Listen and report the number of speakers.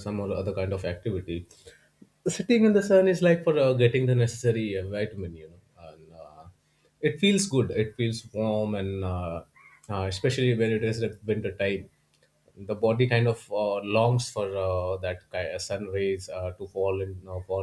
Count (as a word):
one